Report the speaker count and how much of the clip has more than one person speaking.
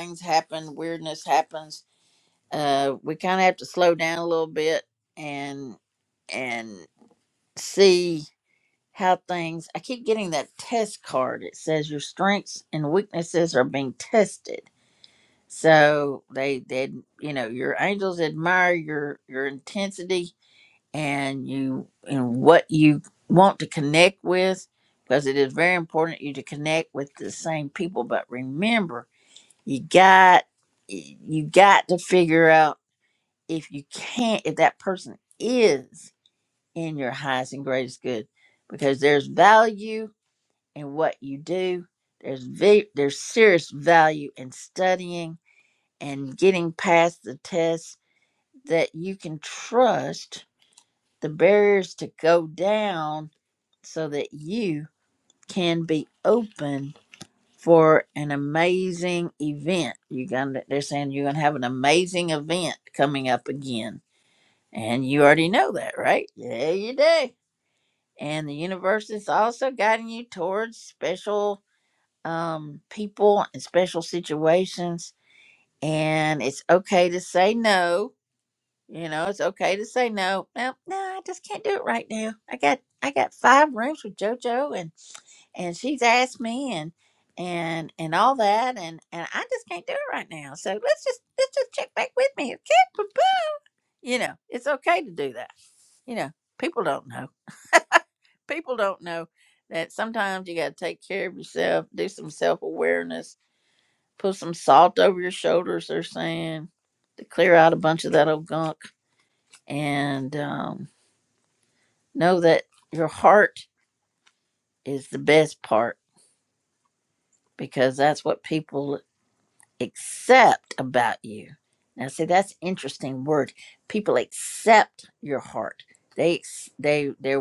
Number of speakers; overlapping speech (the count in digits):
1, no overlap